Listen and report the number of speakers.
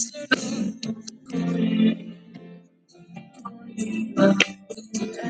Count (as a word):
zero